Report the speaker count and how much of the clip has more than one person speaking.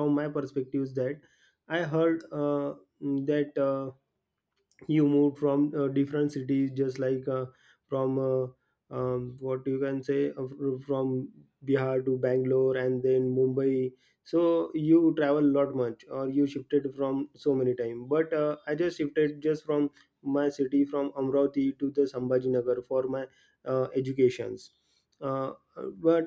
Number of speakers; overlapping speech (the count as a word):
one, no overlap